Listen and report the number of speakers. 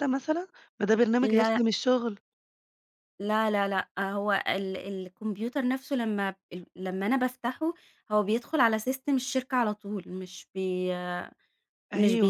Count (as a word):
two